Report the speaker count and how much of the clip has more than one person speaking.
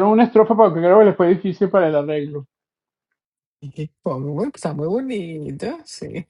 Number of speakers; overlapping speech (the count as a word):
two, no overlap